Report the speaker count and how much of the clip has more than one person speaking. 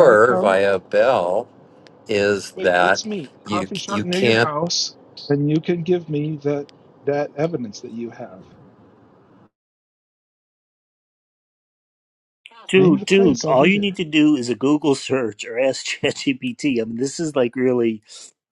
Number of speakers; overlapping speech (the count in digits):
3, about 17%